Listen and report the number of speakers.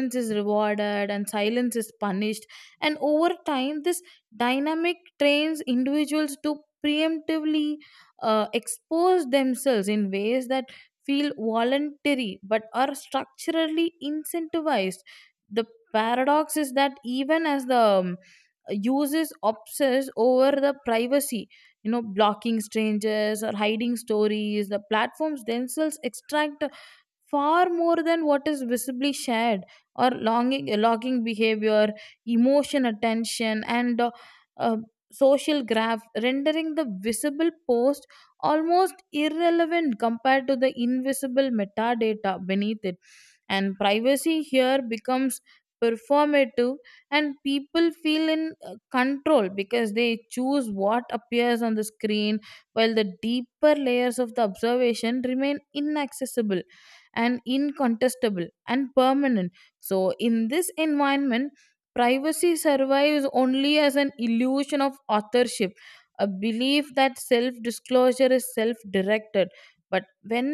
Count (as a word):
one